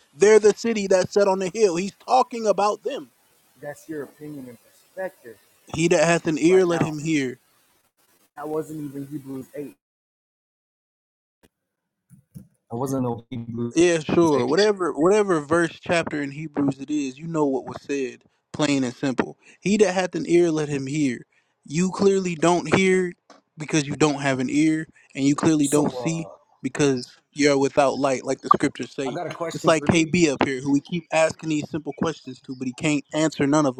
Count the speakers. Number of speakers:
two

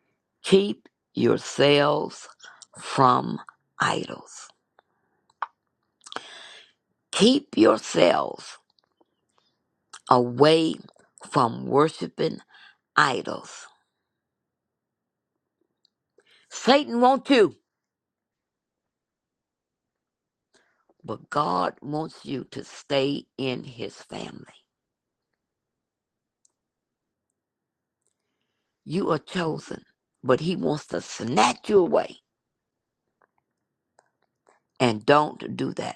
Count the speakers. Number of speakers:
one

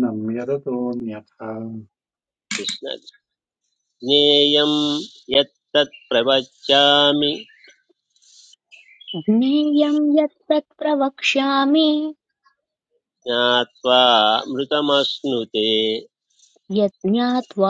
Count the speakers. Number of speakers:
three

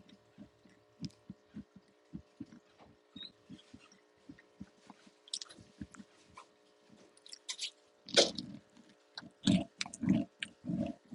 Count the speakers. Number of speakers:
zero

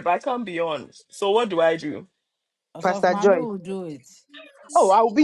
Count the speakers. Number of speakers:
three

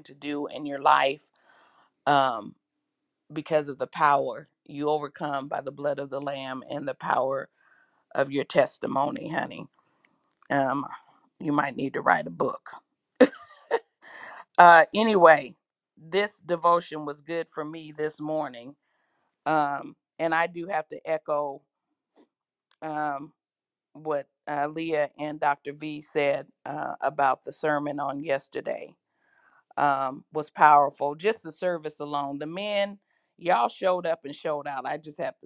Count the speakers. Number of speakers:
one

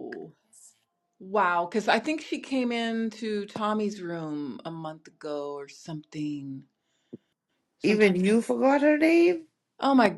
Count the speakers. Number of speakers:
two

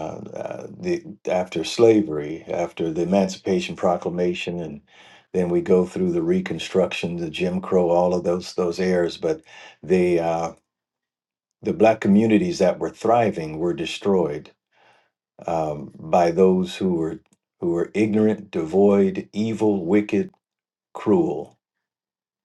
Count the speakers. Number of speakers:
one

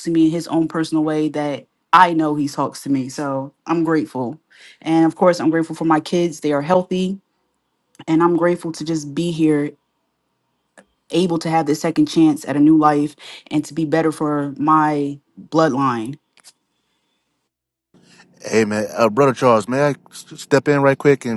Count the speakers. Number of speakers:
two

